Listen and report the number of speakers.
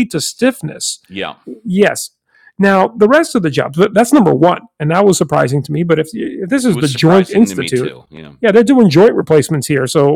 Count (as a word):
two